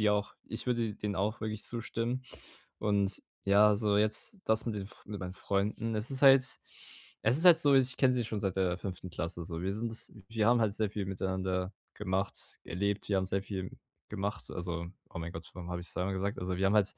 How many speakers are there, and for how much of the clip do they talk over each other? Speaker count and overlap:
1, no overlap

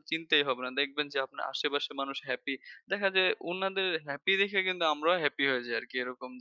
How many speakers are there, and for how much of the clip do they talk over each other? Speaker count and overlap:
1, no overlap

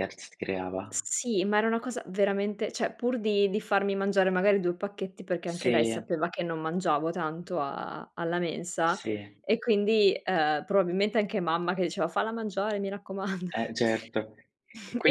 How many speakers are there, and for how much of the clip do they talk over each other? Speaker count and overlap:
2, about 5%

